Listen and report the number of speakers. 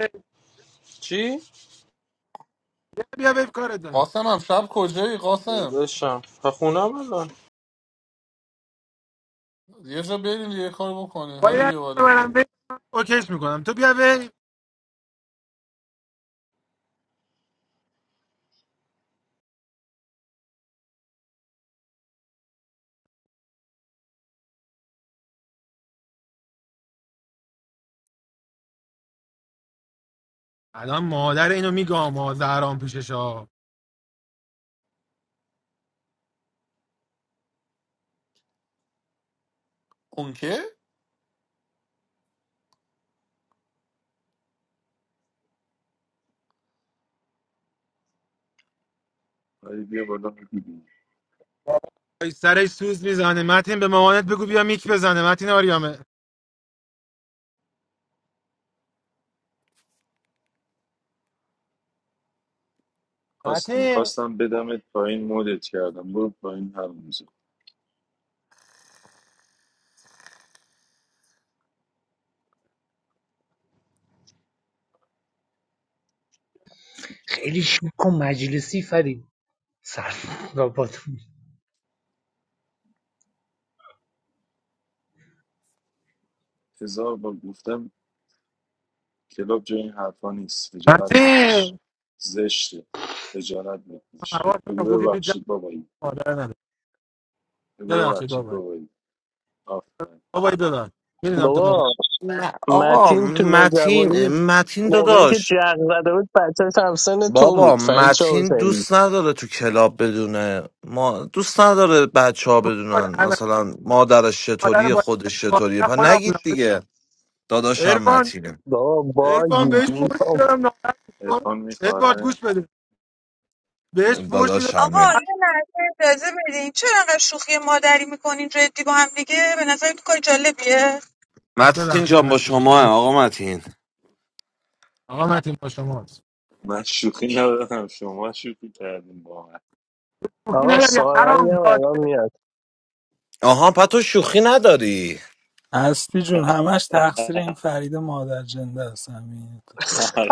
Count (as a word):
nine